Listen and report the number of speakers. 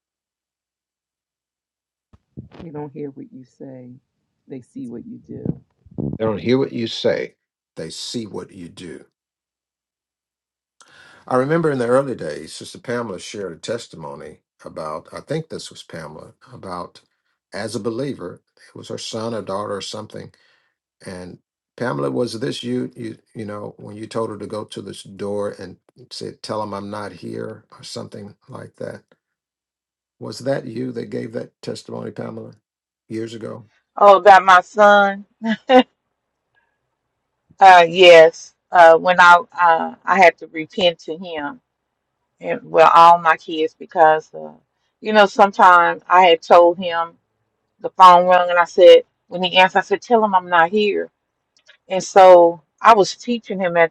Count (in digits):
3